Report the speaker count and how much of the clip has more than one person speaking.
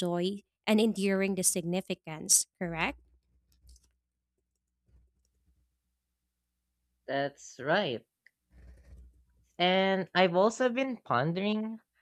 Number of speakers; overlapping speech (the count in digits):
2, no overlap